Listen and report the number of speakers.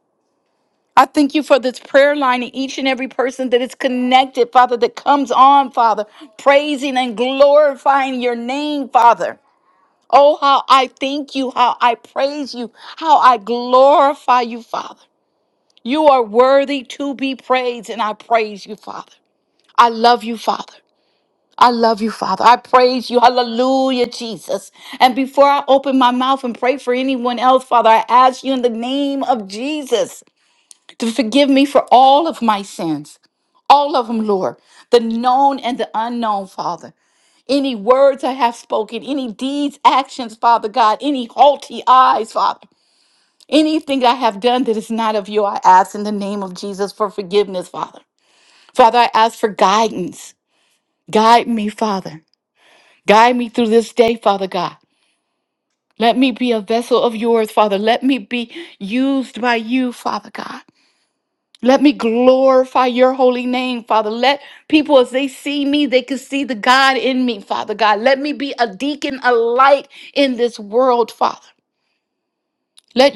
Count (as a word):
one